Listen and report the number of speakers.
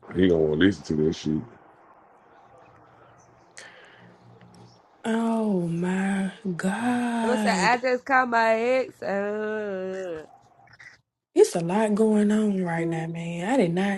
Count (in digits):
3